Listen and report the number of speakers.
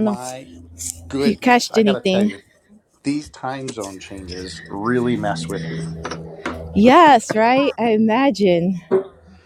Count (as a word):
two